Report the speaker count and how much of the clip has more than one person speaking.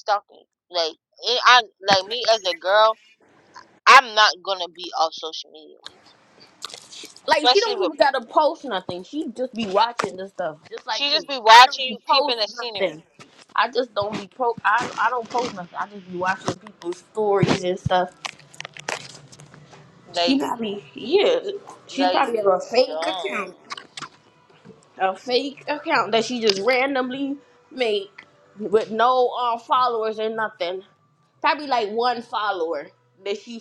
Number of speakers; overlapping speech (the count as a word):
two, about 13%